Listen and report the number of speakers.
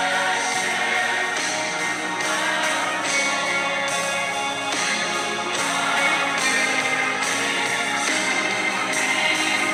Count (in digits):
0